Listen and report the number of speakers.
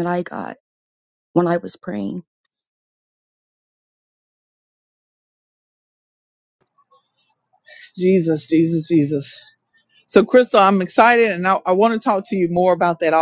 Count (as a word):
two